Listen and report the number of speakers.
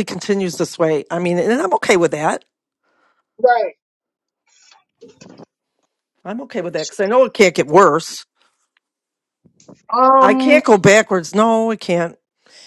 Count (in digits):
2